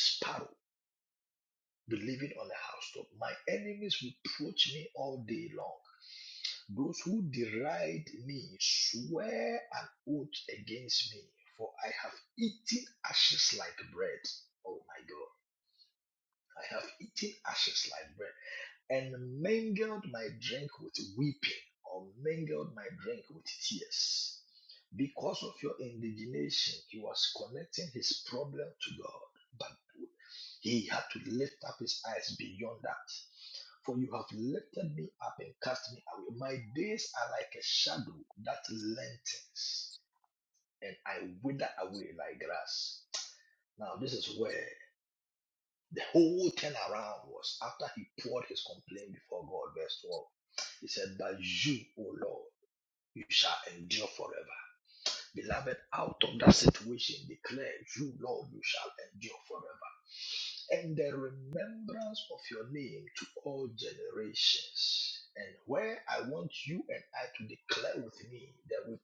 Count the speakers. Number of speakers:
one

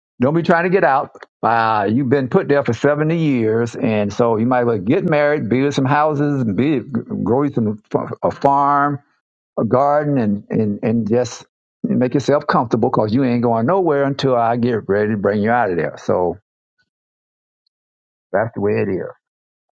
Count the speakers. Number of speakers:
one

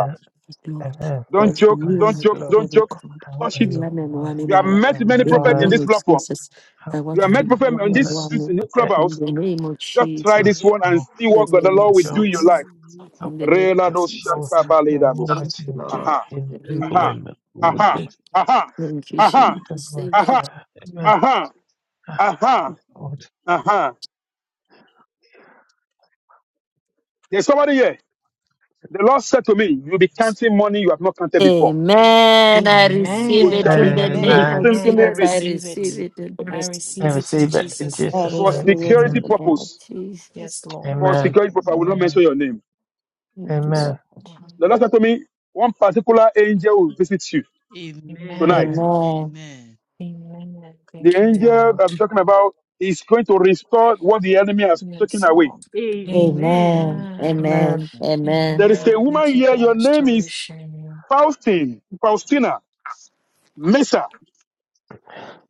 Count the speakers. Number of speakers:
five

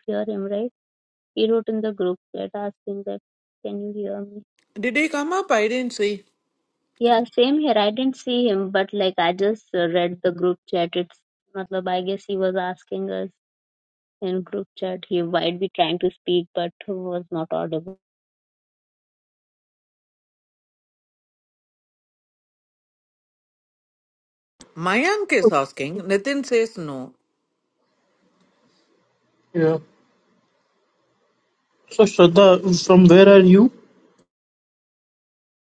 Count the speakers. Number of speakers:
three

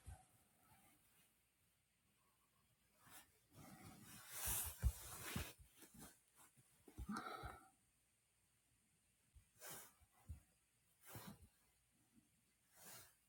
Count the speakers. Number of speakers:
zero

